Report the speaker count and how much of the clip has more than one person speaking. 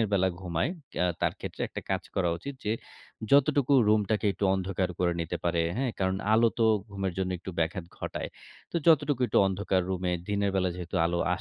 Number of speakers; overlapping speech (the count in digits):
1, no overlap